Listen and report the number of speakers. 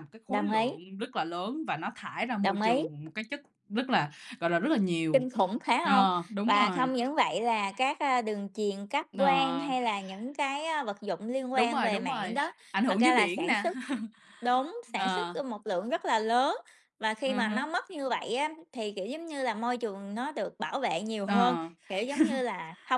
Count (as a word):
two